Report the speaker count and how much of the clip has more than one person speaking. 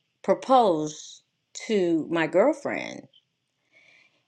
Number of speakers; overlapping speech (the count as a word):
one, no overlap